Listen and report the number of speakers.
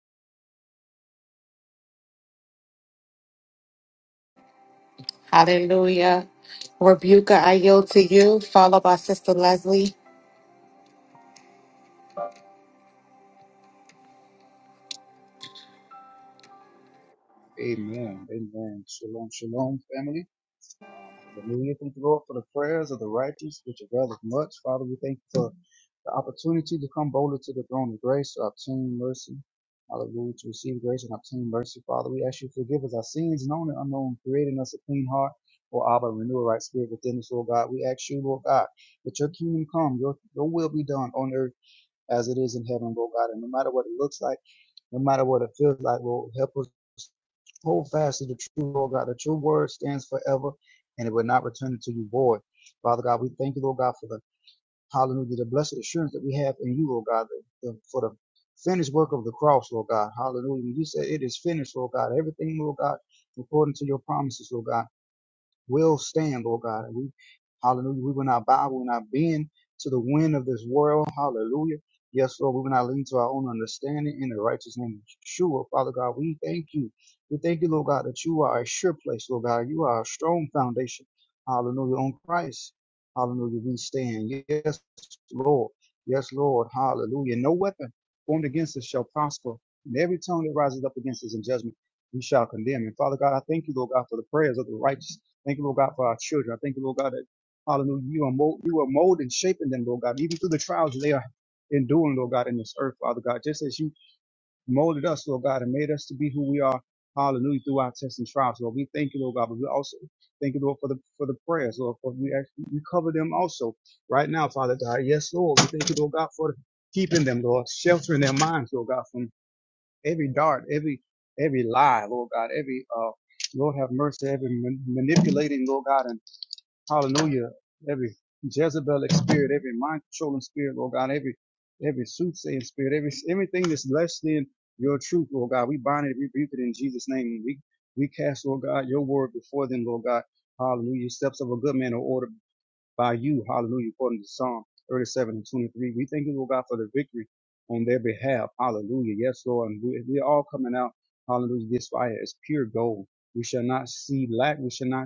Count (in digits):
2